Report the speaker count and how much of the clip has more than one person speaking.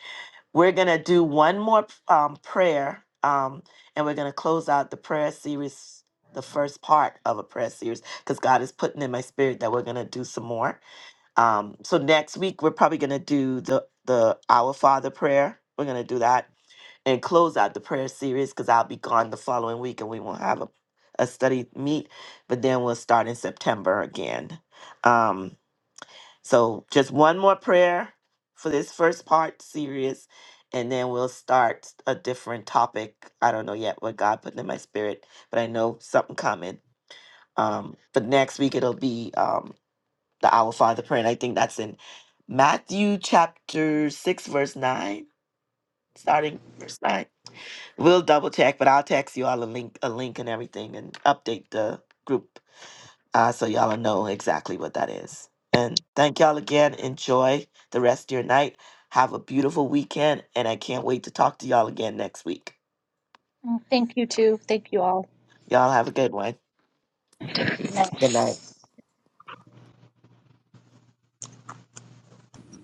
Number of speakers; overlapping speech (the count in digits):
2, no overlap